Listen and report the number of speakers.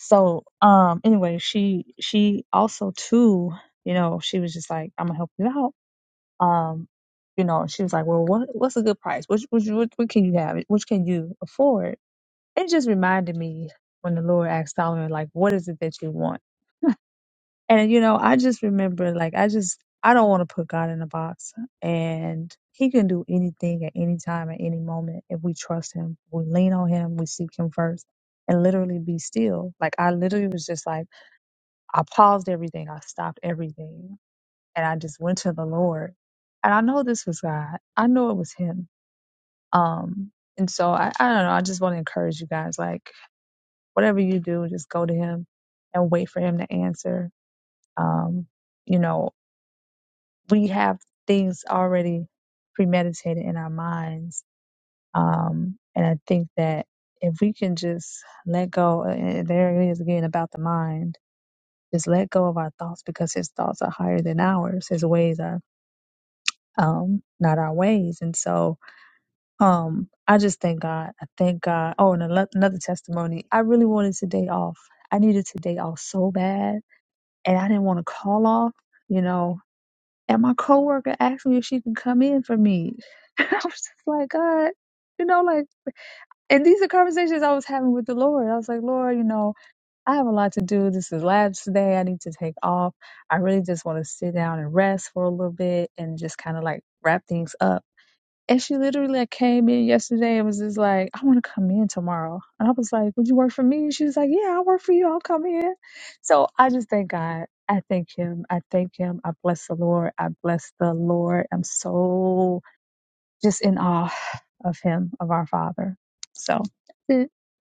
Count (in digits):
1